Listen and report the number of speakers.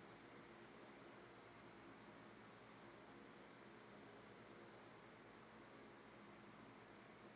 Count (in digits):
0